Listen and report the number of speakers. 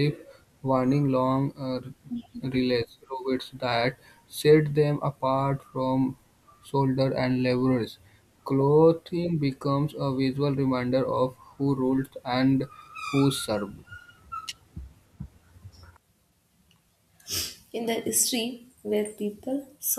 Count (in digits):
2